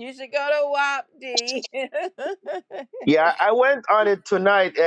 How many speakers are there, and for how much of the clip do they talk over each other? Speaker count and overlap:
2, no overlap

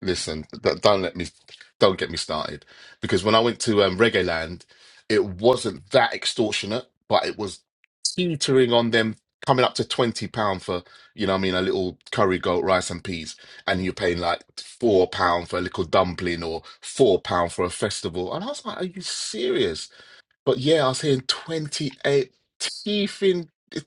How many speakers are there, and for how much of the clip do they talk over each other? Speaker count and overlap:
1, no overlap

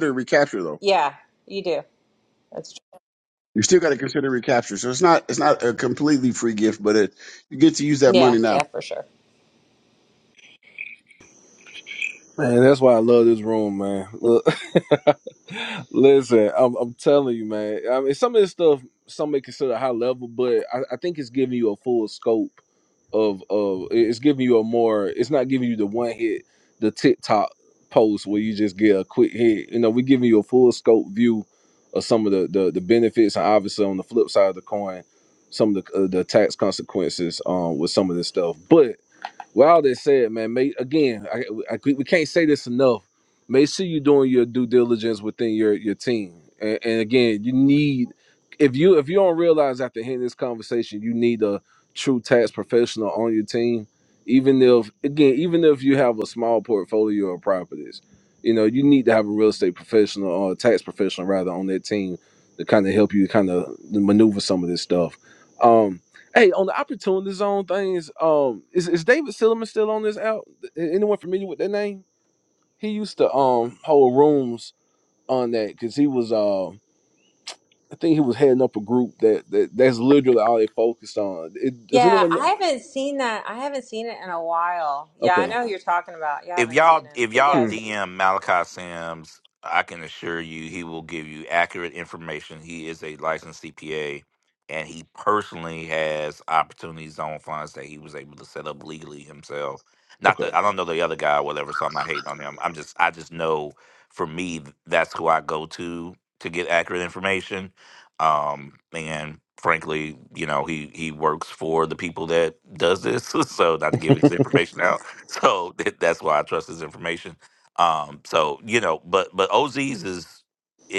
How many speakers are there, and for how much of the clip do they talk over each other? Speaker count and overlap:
4, about 2%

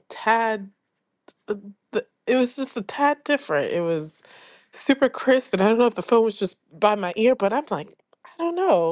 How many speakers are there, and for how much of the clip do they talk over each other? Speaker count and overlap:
1, no overlap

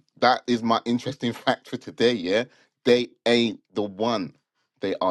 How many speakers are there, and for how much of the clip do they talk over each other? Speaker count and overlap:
1, no overlap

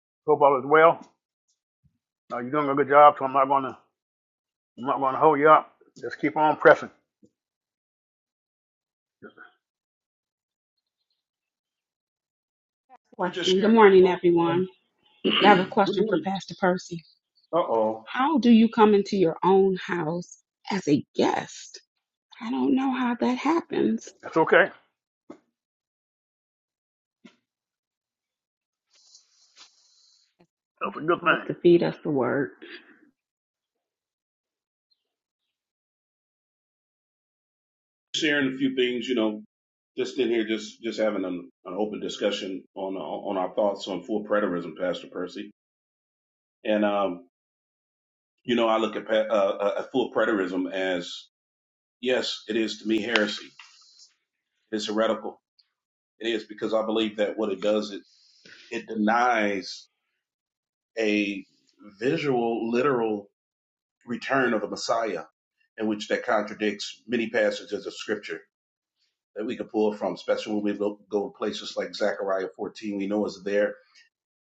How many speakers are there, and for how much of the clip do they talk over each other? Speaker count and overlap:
3, about 2%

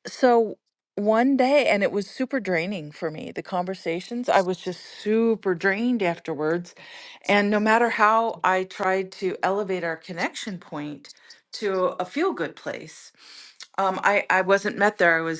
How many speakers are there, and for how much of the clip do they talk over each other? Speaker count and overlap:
1, no overlap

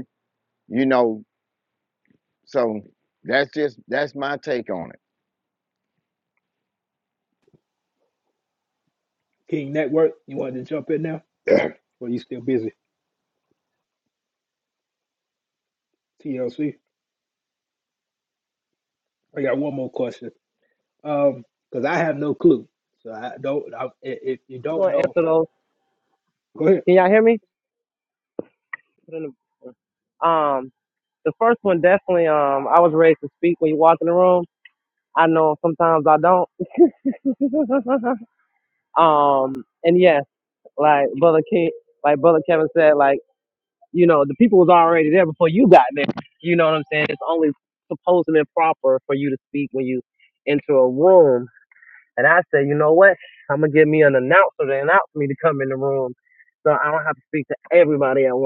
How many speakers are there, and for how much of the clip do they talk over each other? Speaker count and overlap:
3, about 1%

